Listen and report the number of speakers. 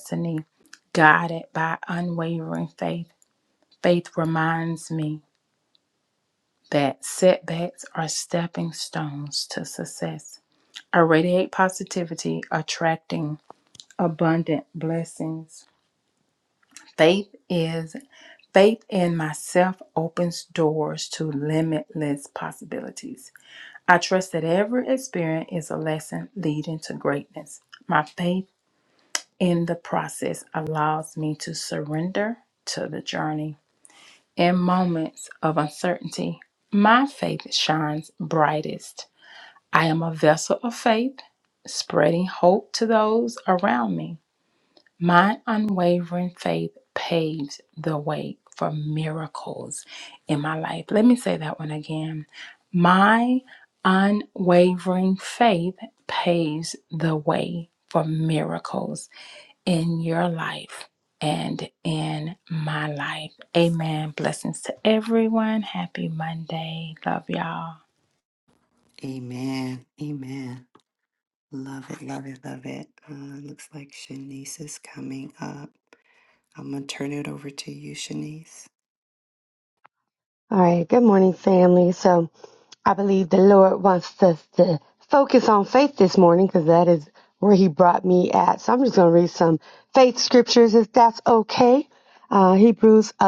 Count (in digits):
3